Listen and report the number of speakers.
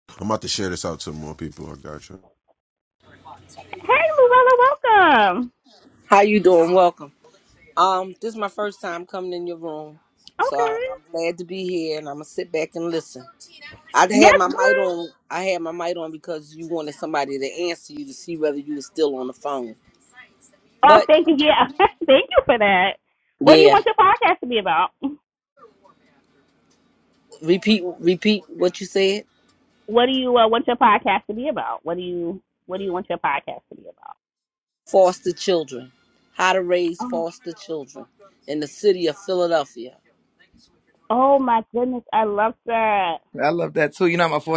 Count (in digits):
4